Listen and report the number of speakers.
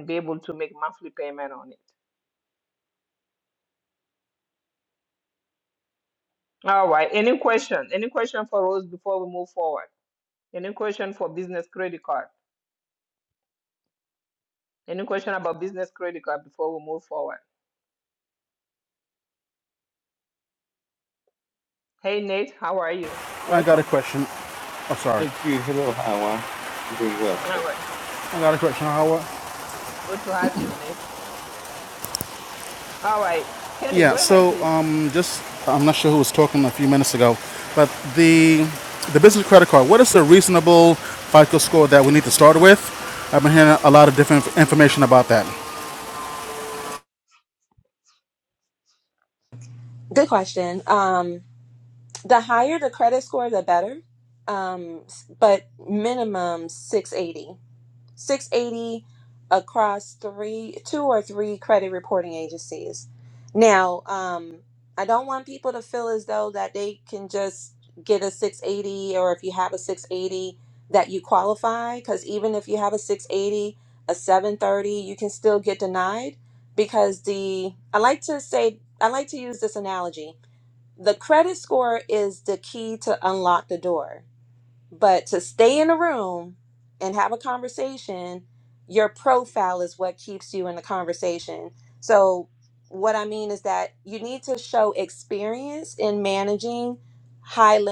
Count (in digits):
4